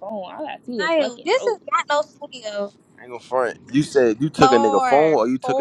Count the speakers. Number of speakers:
3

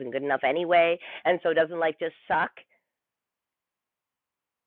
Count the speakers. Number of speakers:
1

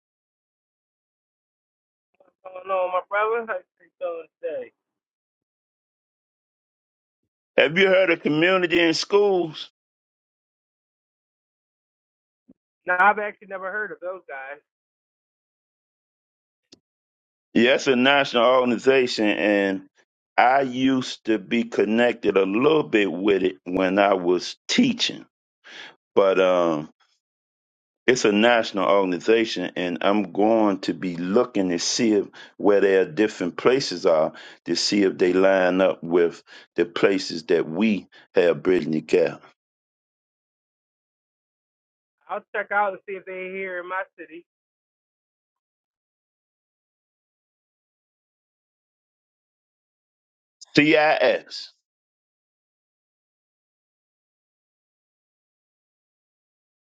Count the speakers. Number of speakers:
2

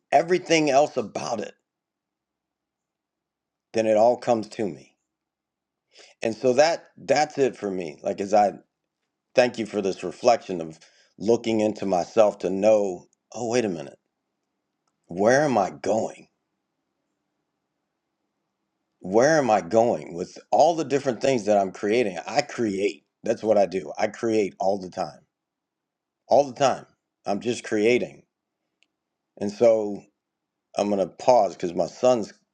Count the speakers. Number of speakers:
1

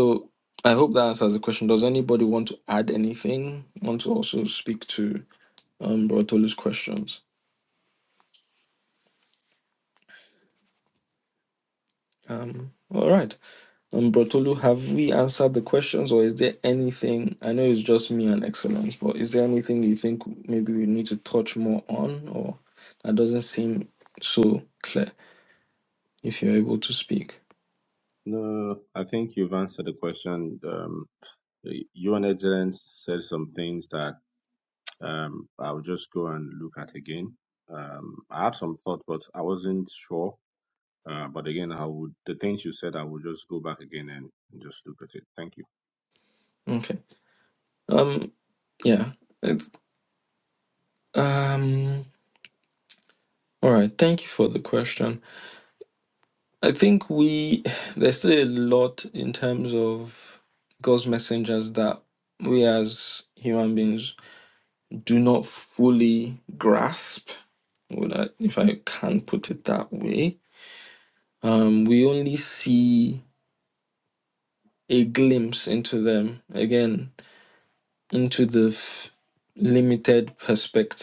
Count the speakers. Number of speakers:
2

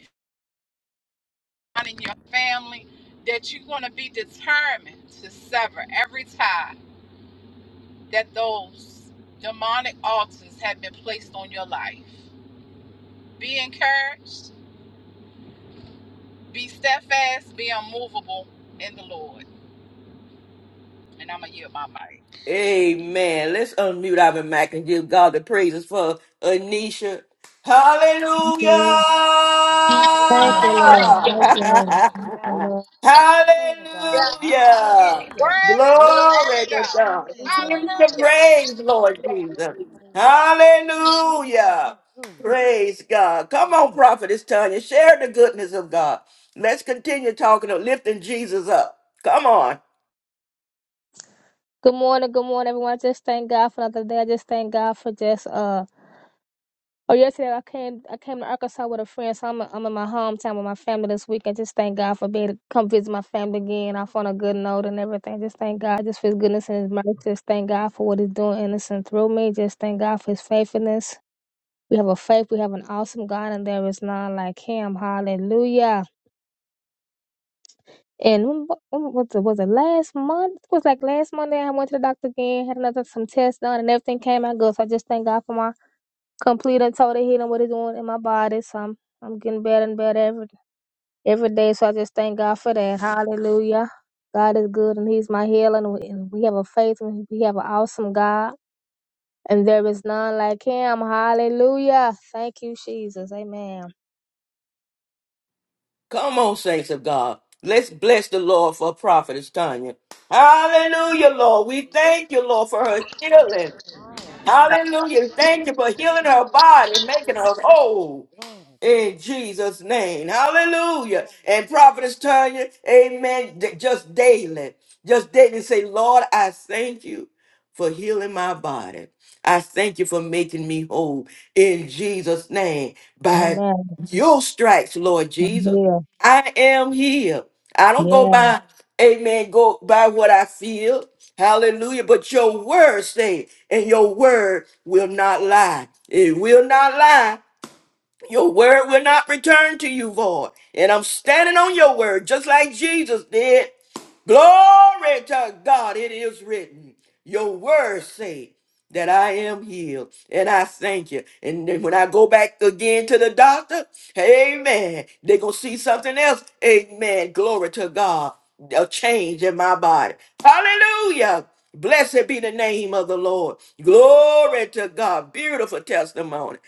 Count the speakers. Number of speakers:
4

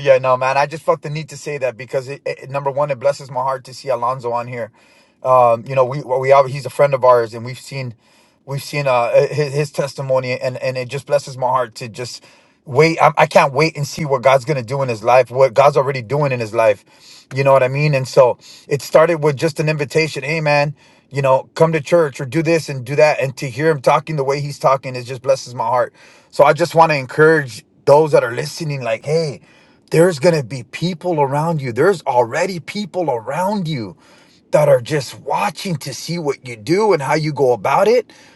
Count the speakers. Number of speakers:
1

